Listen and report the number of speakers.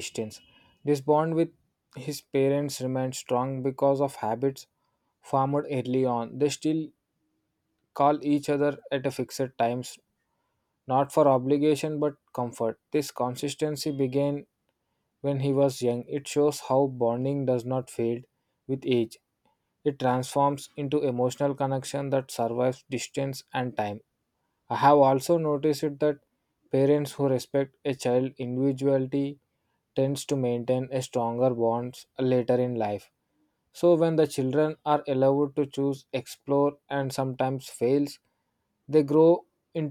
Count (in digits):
1